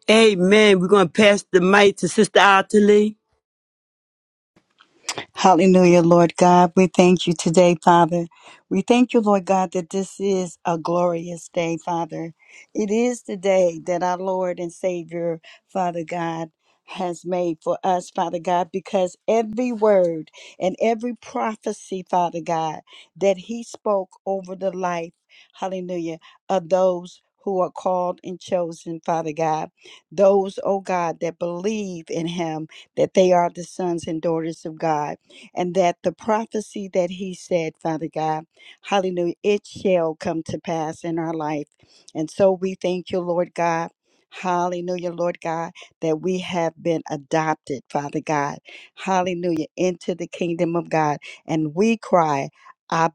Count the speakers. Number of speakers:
two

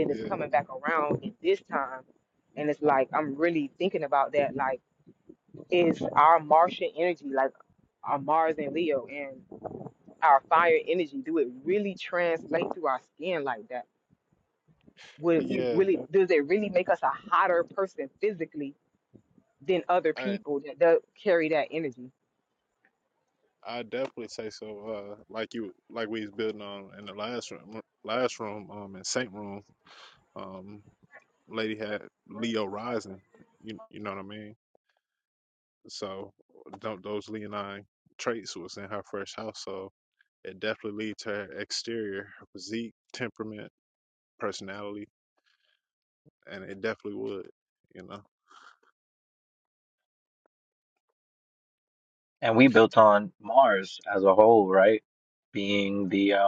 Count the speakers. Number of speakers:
three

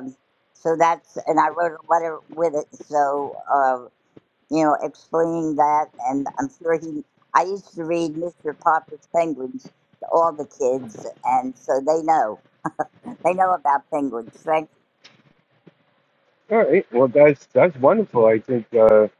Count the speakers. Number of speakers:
two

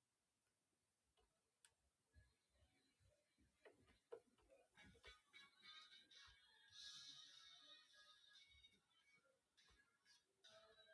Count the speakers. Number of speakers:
zero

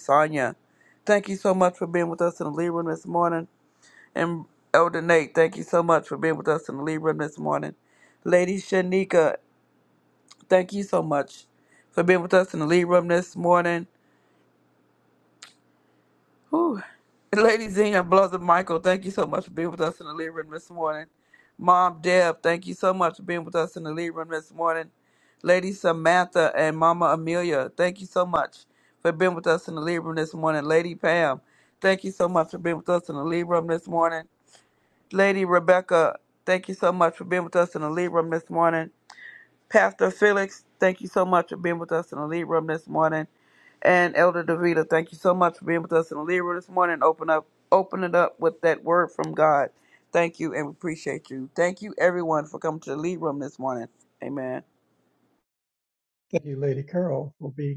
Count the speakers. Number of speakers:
two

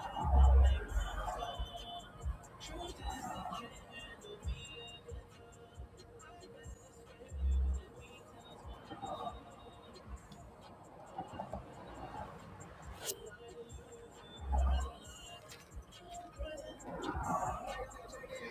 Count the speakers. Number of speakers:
zero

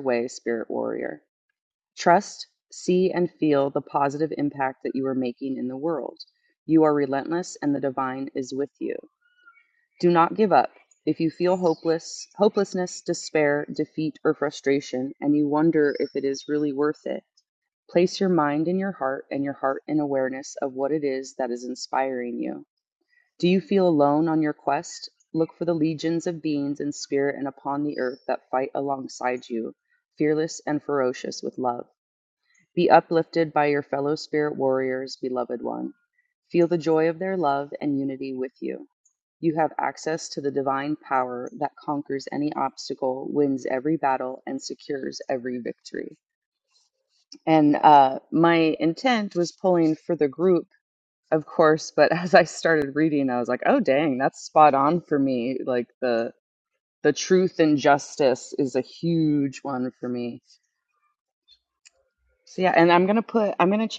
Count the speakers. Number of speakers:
one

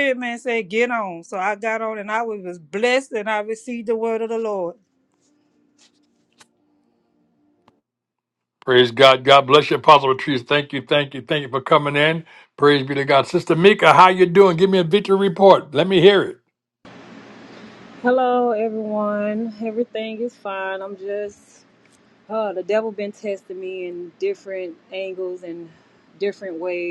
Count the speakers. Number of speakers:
three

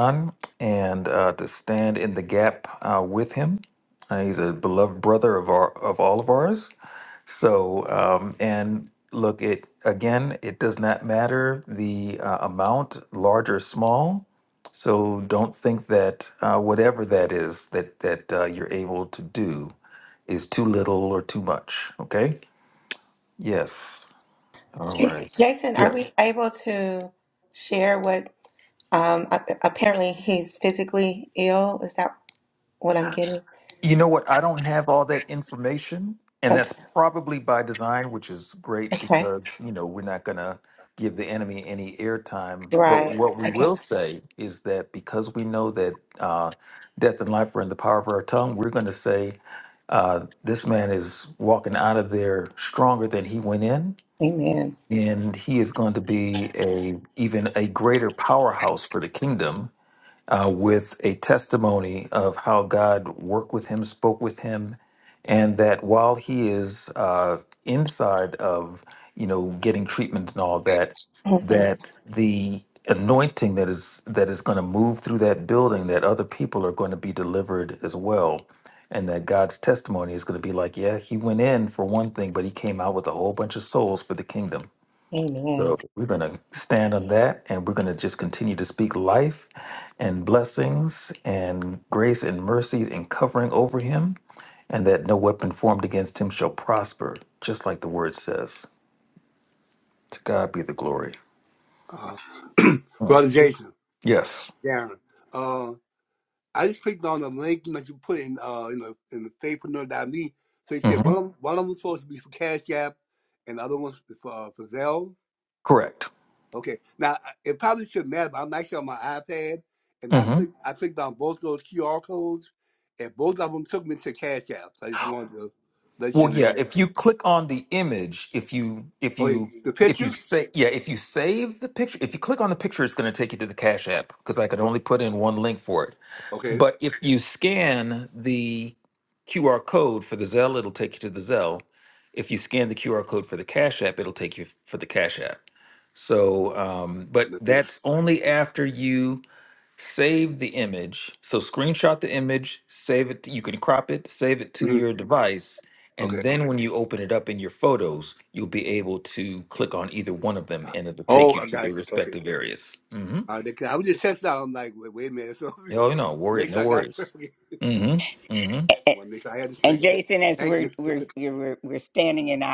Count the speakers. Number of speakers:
four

